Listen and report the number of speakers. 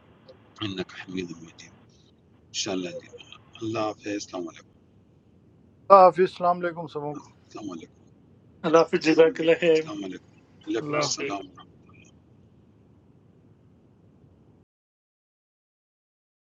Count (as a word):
three